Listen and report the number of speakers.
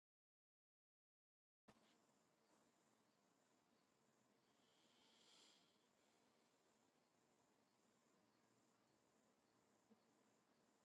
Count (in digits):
0